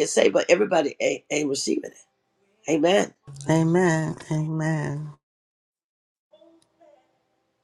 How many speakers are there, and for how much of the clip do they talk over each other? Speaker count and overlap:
2, no overlap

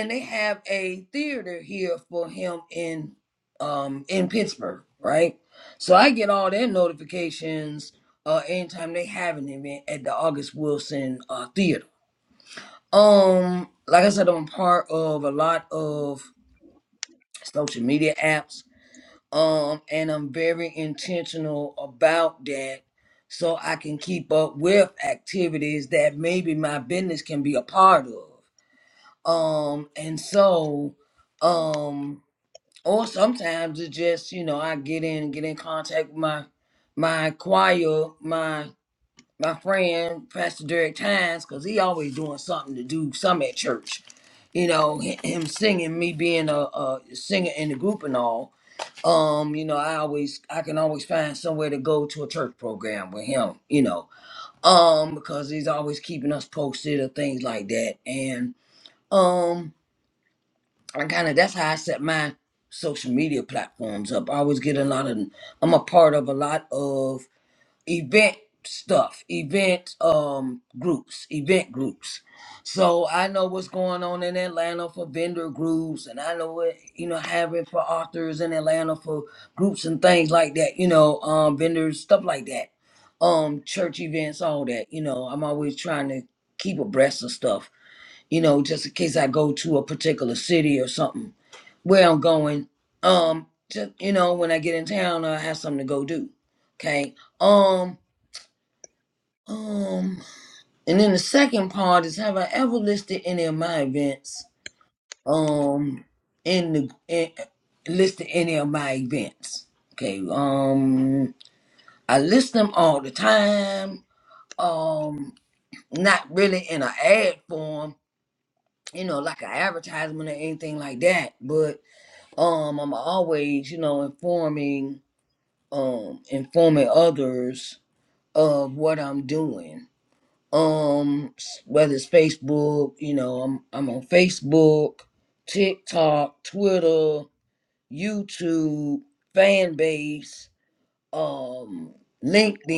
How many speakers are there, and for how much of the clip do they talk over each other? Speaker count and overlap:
1, no overlap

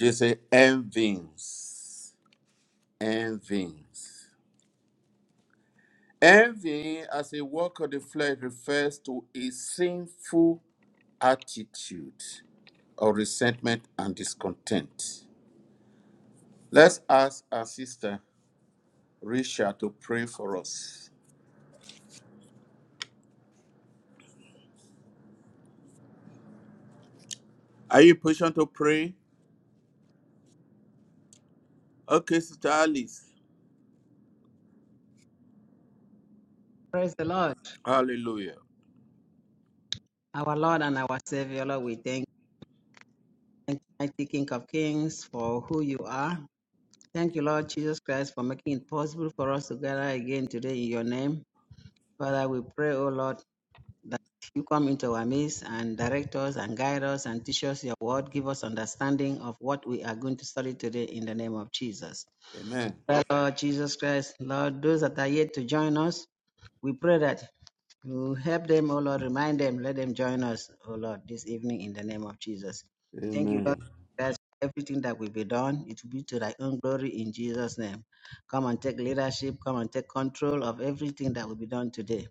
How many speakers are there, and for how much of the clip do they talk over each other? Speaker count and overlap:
2, about 1%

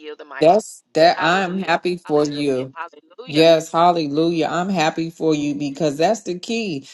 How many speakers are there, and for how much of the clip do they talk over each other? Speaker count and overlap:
2, about 21%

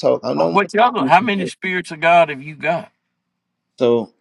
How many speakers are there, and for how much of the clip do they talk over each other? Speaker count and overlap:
2, about 17%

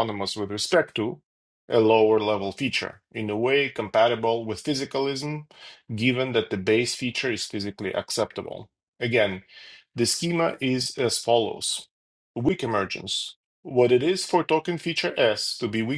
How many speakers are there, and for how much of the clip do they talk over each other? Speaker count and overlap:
1, no overlap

